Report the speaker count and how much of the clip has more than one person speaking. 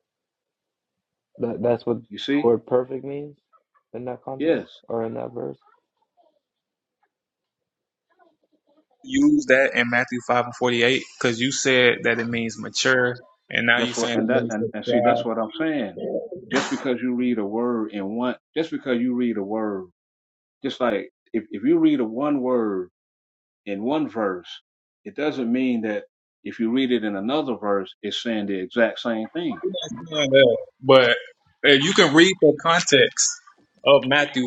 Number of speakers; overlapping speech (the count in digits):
3, about 5%